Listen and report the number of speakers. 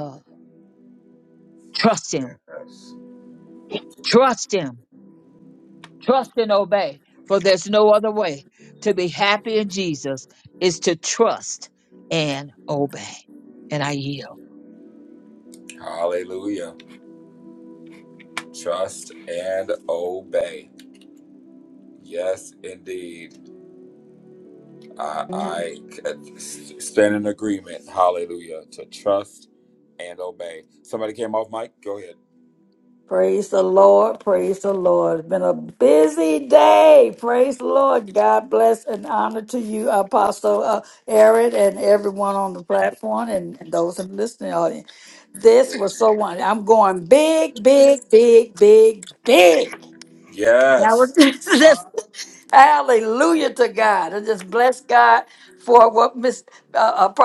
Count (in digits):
3